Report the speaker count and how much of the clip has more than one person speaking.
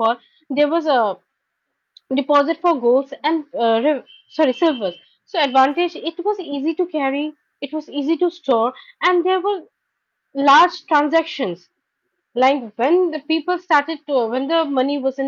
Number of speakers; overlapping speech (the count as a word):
one, no overlap